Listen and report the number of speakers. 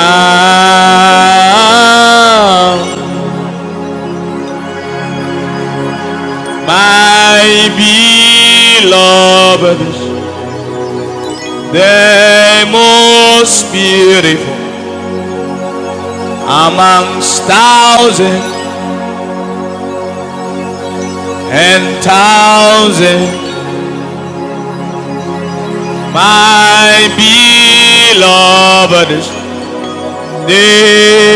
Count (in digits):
1